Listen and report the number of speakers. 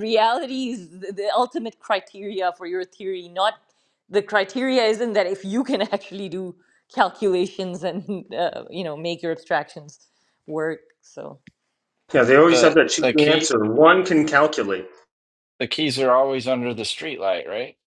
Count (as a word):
three